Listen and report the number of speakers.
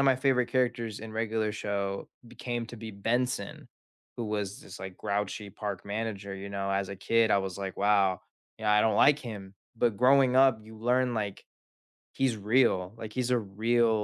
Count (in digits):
1